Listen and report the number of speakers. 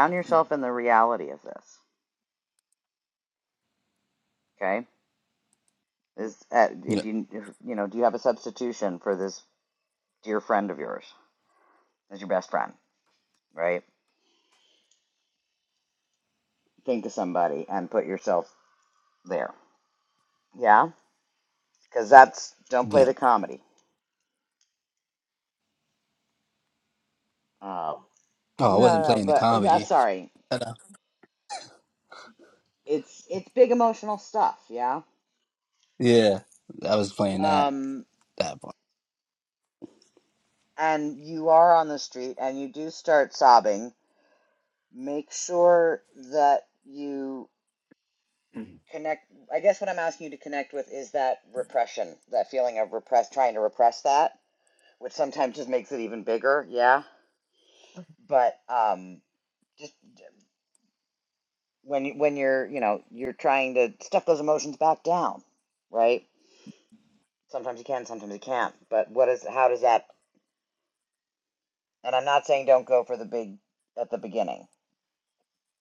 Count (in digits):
2